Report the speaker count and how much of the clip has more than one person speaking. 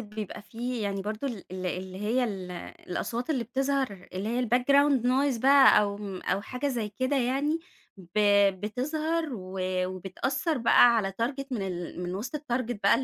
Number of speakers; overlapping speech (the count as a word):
one, no overlap